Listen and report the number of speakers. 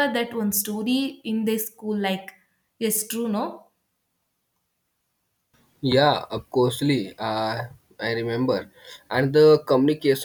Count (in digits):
2